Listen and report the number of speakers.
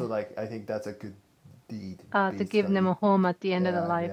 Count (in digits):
2